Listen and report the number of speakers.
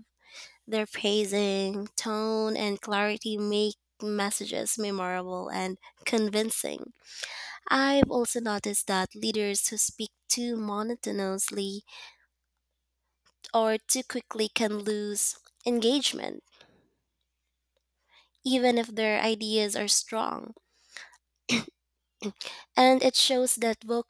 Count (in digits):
1